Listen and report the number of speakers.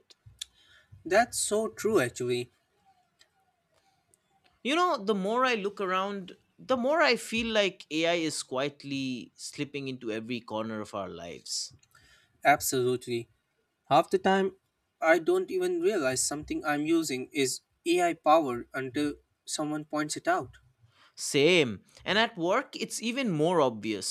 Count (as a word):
two